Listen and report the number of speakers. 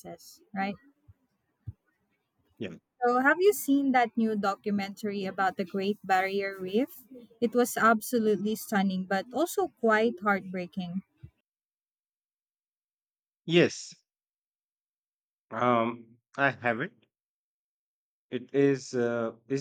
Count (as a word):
two